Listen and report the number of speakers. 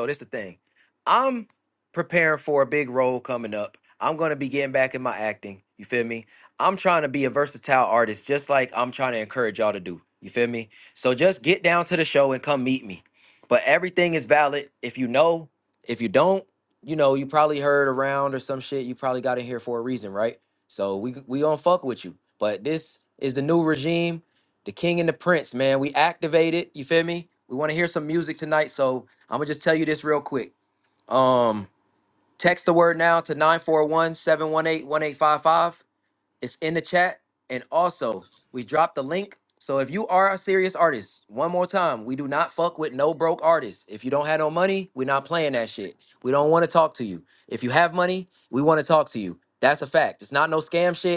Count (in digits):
1